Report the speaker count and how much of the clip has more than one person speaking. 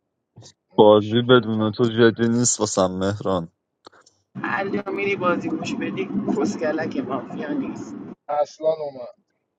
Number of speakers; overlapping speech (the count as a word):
three, about 14%